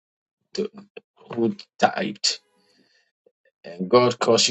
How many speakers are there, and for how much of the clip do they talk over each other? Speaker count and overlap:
one, no overlap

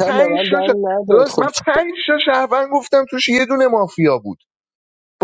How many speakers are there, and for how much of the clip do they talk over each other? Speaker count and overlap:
two, about 21%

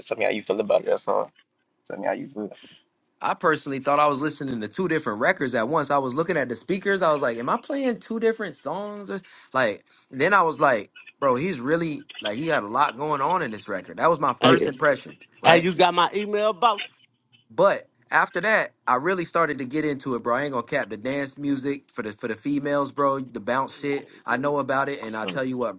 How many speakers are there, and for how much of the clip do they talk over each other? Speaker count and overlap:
three, about 4%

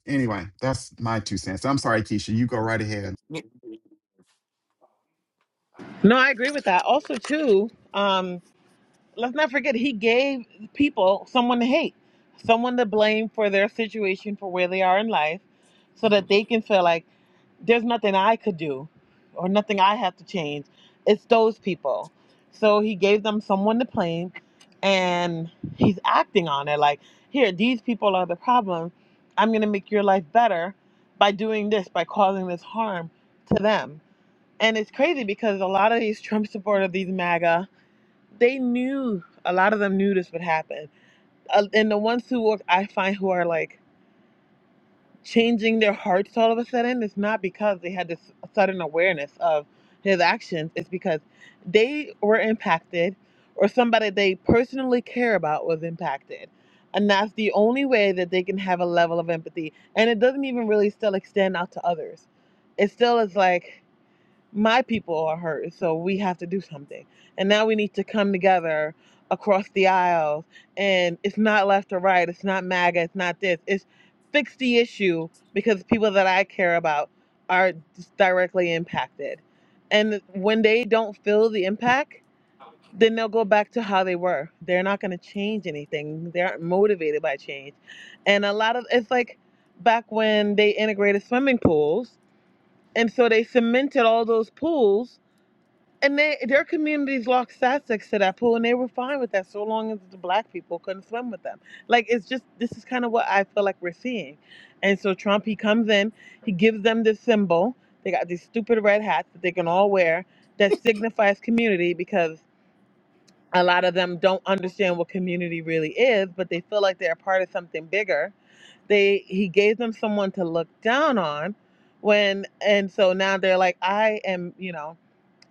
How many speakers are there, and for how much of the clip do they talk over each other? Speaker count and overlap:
two, no overlap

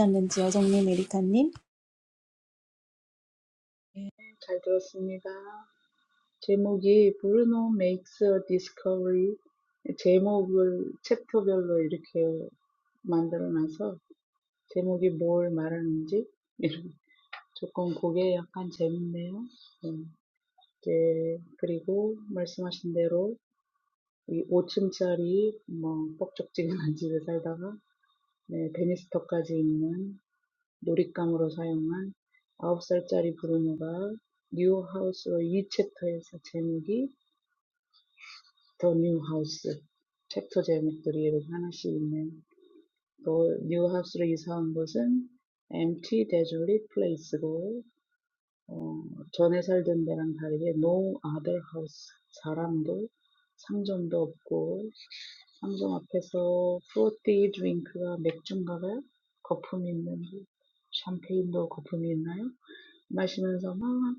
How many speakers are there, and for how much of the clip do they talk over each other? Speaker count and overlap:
two, no overlap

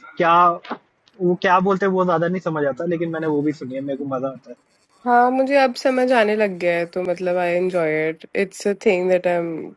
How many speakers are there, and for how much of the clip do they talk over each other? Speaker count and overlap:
two, no overlap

